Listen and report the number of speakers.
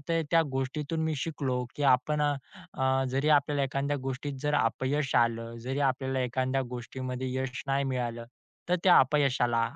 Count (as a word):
one